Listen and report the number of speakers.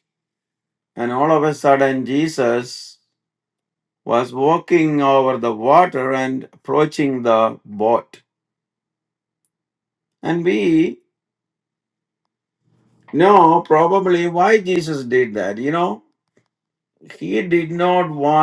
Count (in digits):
1